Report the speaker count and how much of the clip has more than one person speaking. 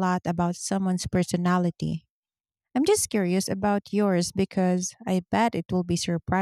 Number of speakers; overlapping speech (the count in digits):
1, no overlap